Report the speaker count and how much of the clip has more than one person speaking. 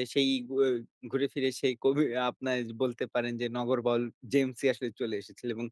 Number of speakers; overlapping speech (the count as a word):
one, no overlap